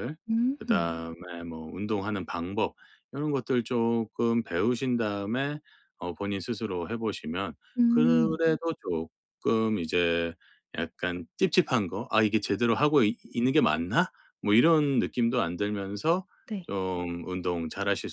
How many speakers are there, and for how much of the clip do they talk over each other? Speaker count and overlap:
2, about 4%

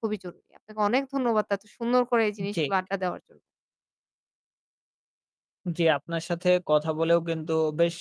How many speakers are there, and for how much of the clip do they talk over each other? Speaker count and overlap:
2, about 2%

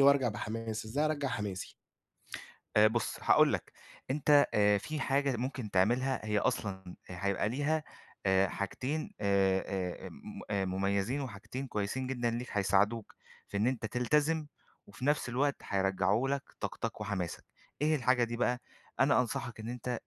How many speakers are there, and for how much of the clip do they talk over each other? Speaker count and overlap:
2, no overlap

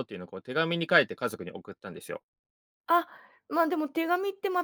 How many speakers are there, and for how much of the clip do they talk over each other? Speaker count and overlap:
2, no overlap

